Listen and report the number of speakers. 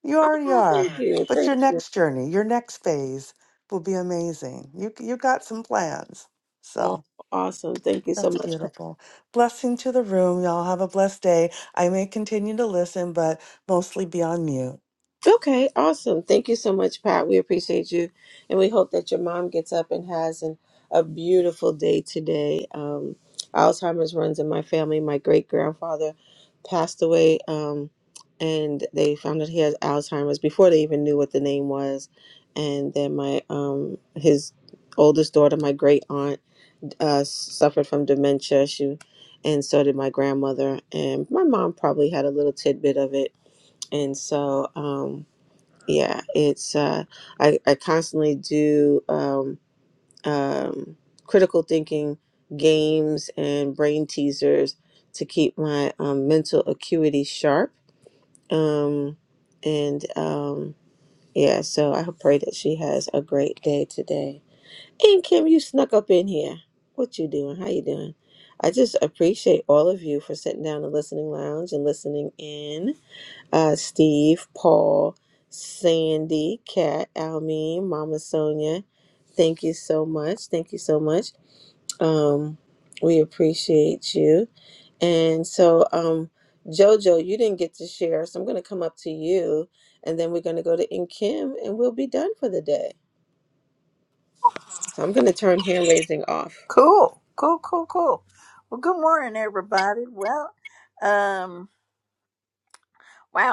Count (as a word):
three